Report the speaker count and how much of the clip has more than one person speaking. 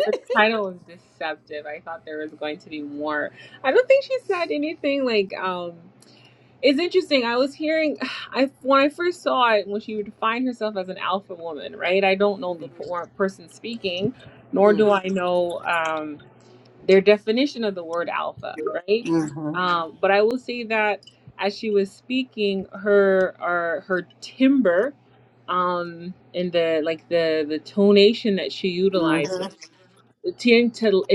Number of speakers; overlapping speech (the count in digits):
2, about 3%